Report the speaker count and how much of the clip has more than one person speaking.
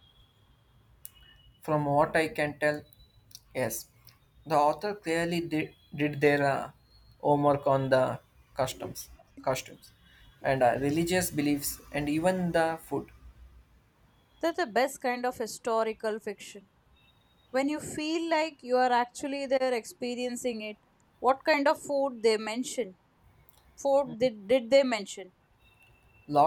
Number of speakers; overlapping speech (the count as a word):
two, no overlap